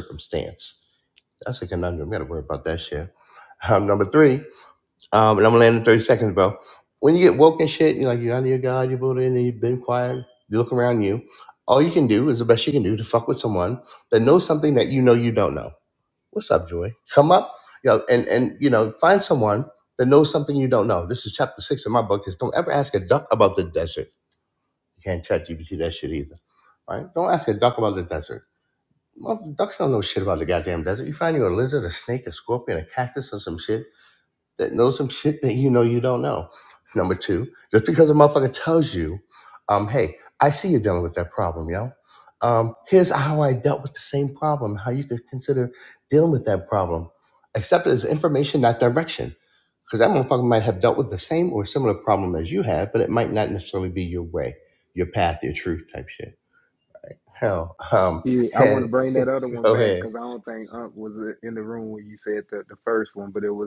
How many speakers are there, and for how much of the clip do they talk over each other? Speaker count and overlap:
2, about 2%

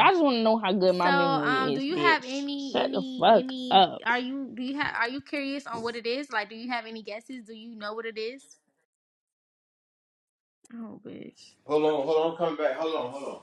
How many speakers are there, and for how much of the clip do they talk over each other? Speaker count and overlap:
3, about 19%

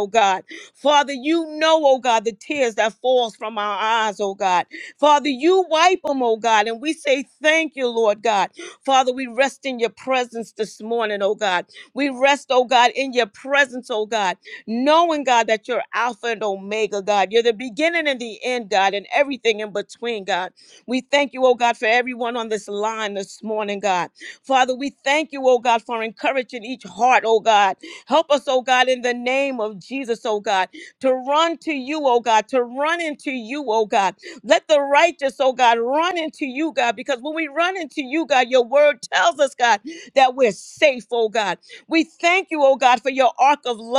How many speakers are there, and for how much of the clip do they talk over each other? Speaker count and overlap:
1, no overlap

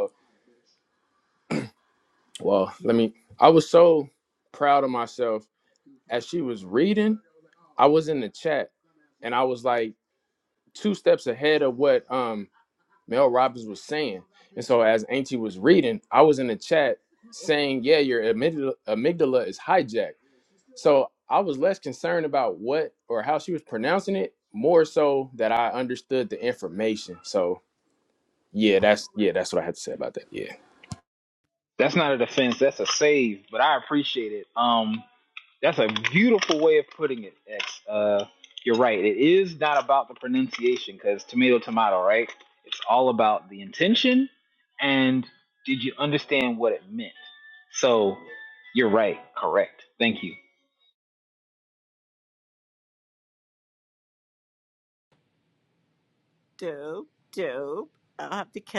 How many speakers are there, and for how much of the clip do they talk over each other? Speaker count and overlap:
3, no overlap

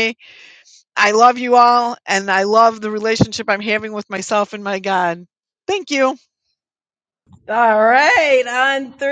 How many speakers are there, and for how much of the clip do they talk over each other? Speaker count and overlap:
2, no overlap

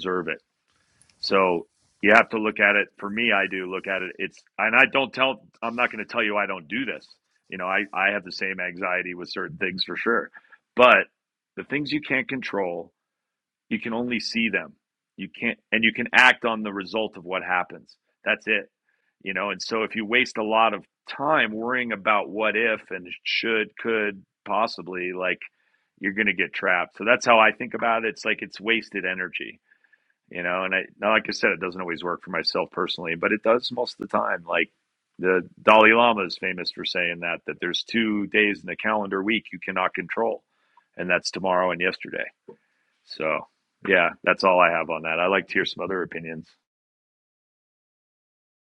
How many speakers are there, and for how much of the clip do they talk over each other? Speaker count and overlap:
1, no overlap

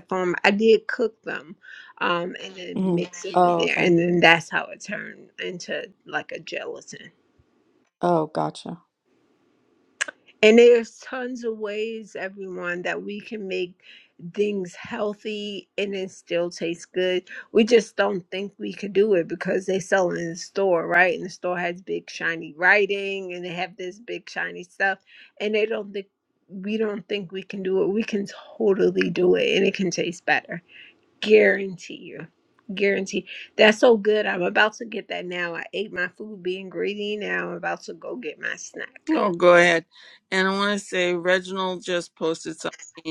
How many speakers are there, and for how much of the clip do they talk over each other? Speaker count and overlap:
3, about 2%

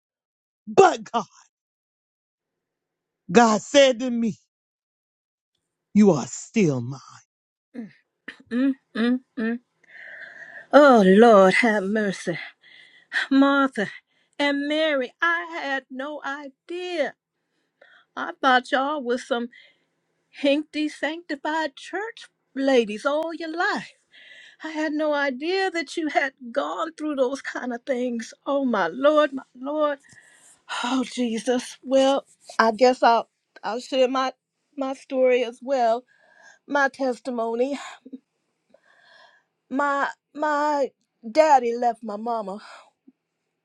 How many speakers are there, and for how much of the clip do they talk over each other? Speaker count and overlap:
2, no overlap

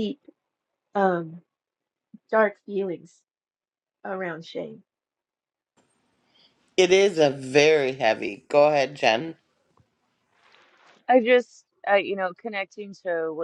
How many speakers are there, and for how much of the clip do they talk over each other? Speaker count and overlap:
3, no overlap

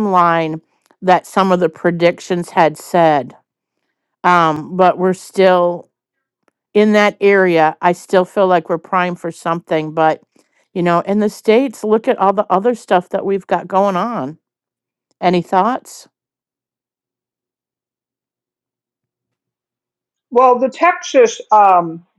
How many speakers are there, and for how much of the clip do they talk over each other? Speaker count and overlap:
2, no overlap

